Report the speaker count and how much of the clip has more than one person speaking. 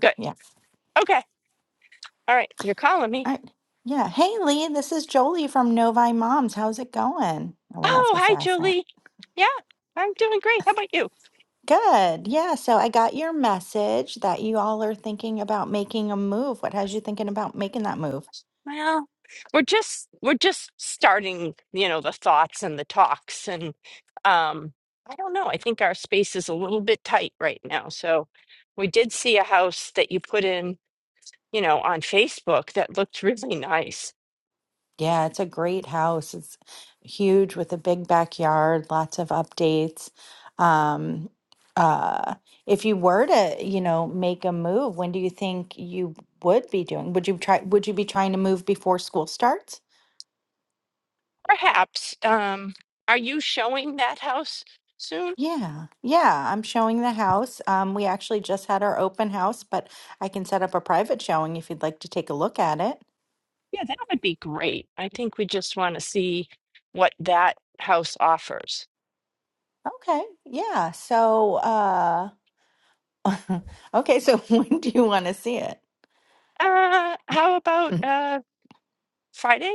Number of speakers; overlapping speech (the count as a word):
two, about 1%